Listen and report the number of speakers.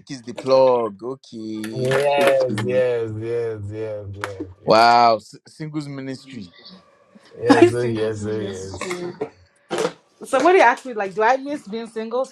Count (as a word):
three